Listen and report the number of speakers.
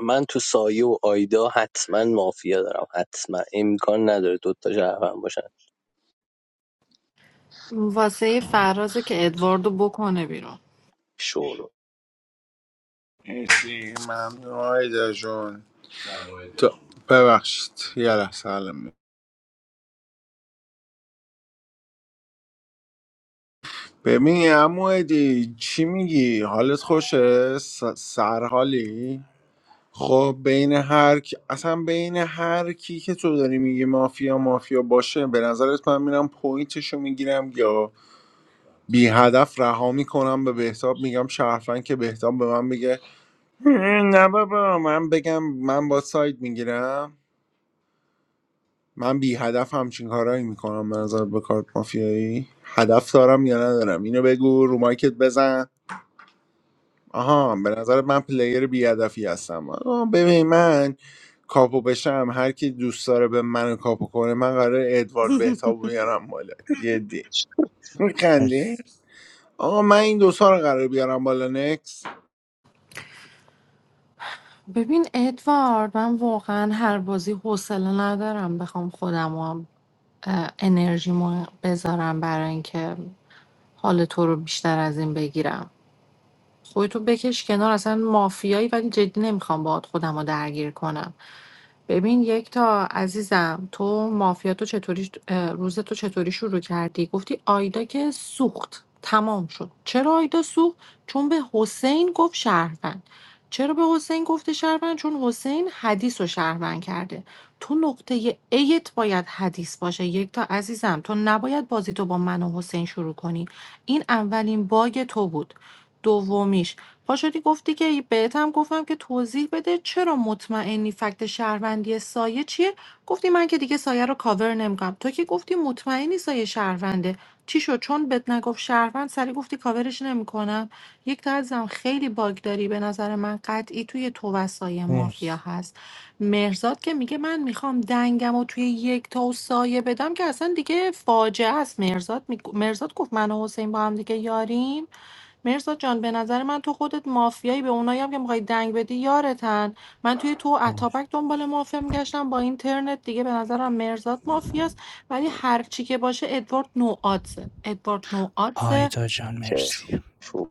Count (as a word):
four